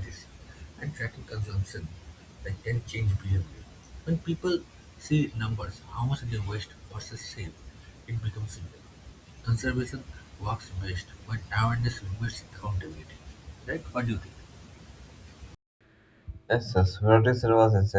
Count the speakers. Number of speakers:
2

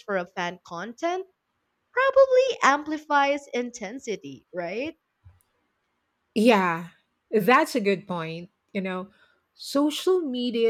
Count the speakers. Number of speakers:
2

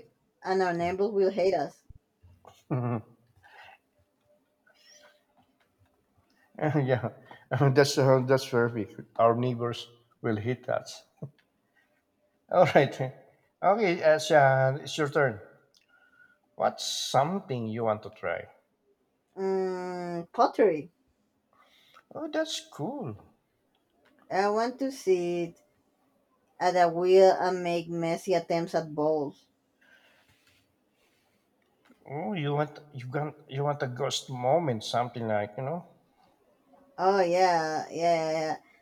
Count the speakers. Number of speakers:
2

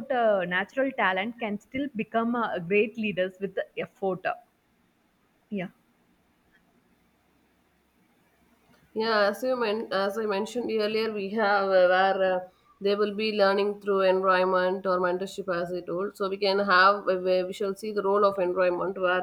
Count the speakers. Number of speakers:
2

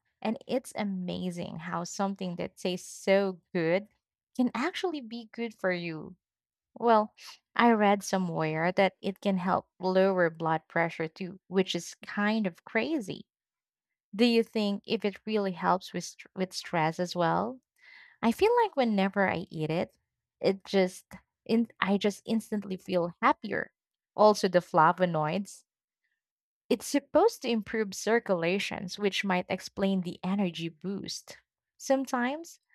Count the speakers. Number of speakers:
1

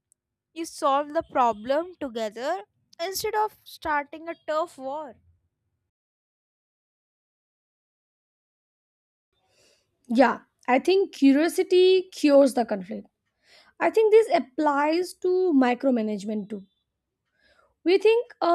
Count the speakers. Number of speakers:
2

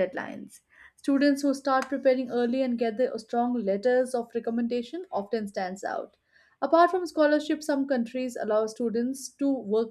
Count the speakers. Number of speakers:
1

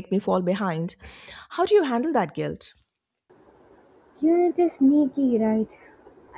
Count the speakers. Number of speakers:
2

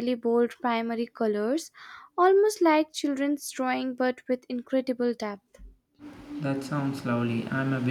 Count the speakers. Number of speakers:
2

